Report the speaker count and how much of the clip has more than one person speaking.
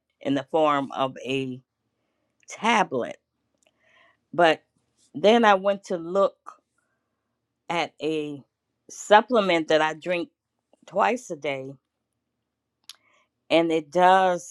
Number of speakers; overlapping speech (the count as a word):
one, no overlap